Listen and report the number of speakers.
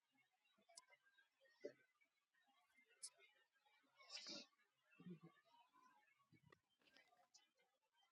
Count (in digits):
0